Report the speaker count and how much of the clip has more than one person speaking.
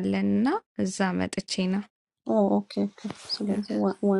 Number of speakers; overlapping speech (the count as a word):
two, no overlap